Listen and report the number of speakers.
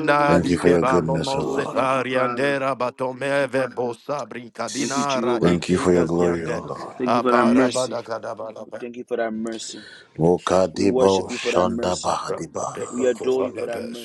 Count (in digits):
3